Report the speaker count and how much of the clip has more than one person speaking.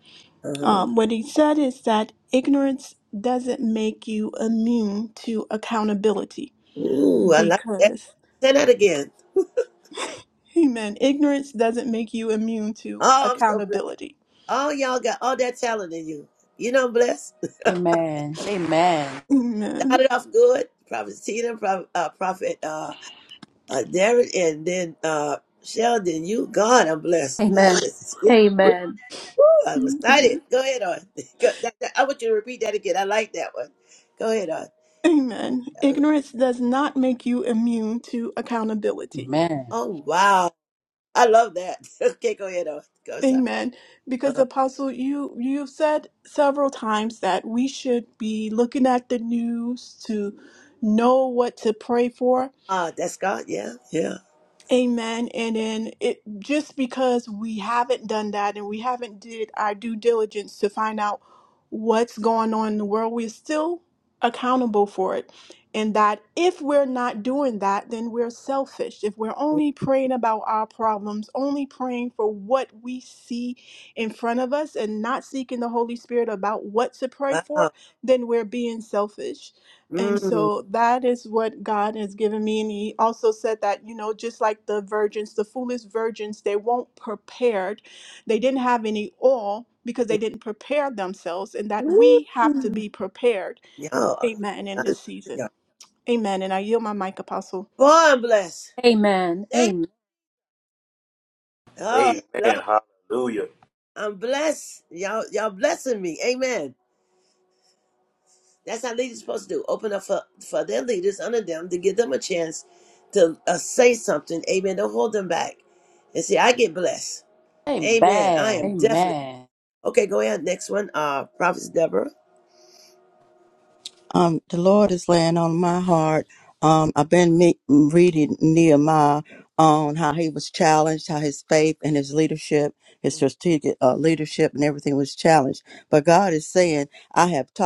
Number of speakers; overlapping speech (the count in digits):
6, about 5%